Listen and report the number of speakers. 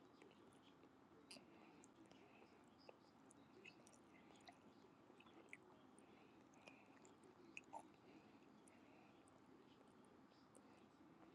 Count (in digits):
0